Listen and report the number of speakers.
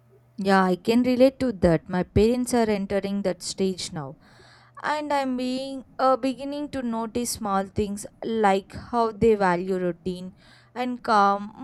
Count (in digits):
1